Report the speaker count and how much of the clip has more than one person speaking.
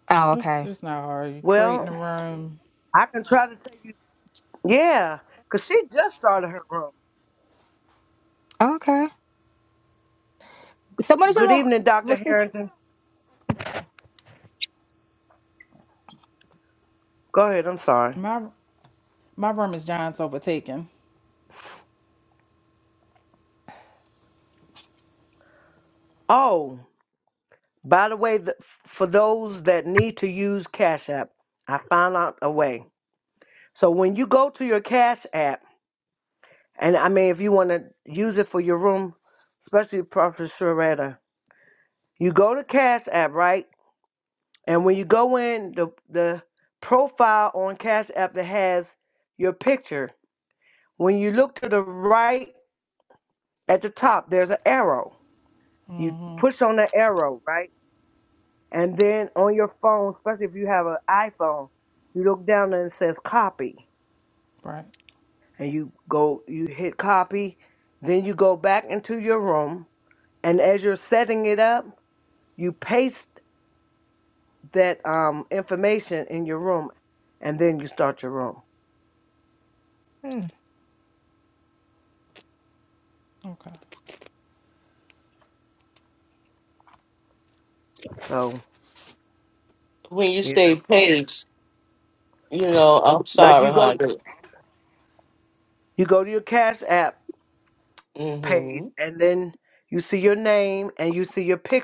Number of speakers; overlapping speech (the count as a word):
four, about 3%